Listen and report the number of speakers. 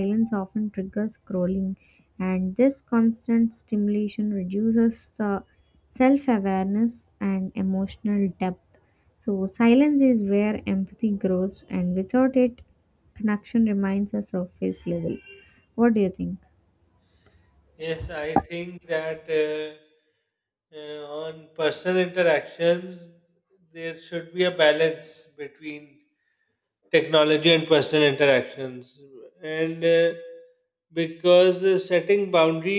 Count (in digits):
2